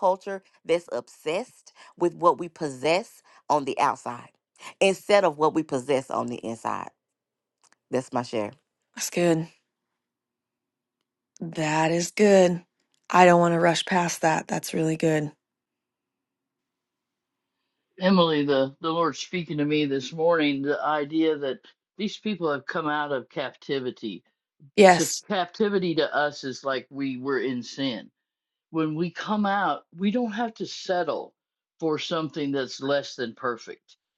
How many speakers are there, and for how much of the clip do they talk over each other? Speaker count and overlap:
three, under 1%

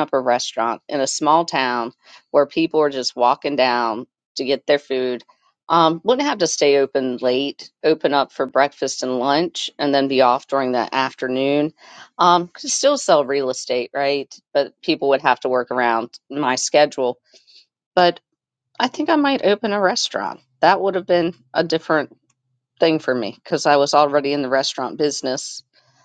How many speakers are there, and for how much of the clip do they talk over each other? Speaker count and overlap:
one, no overlap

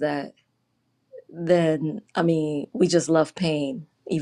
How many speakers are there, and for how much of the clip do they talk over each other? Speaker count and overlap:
one, no overlap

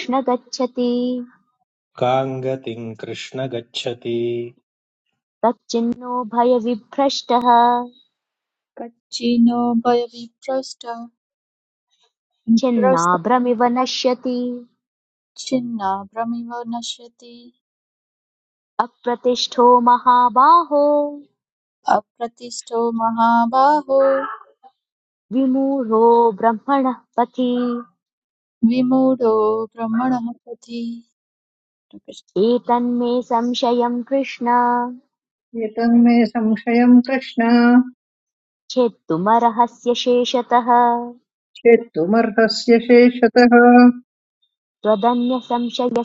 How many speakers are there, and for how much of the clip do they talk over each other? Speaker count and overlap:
four, no overlap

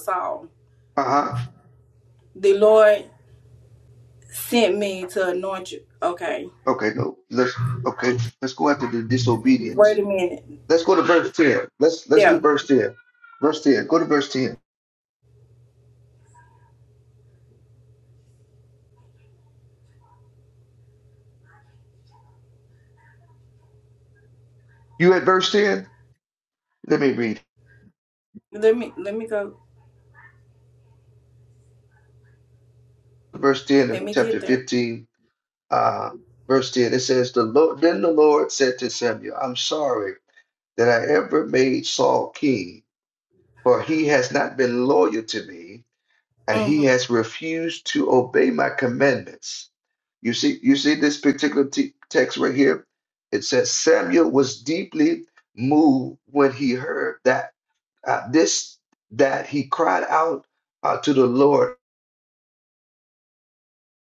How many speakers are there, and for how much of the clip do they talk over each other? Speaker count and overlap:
two, about 2%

